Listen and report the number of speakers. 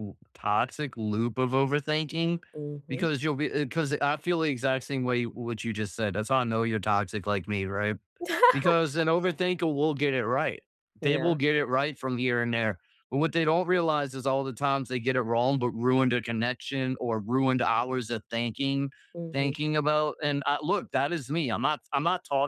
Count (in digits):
2